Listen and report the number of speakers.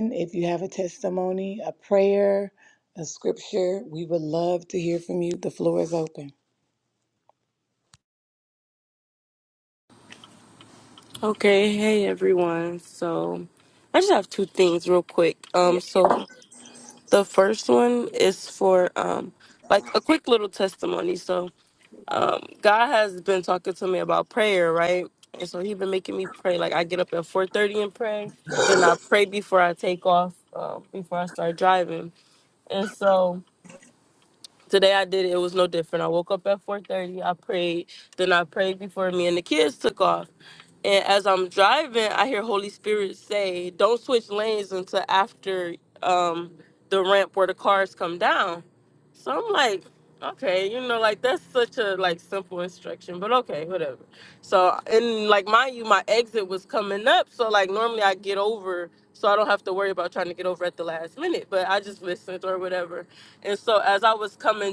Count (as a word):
two